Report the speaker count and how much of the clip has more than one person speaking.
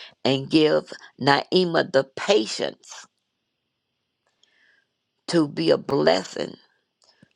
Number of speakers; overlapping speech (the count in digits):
1, no overlap